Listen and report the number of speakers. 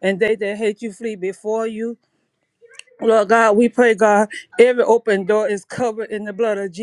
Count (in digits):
1